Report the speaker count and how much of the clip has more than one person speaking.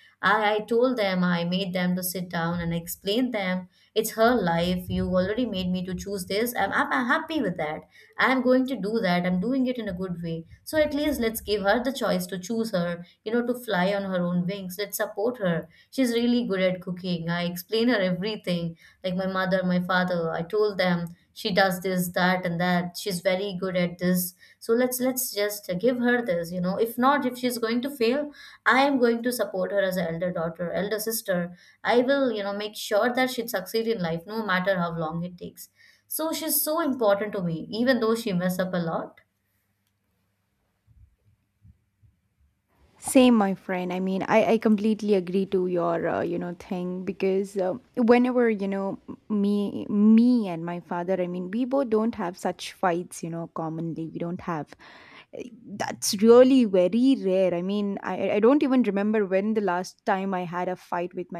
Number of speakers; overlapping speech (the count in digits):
2, no overlap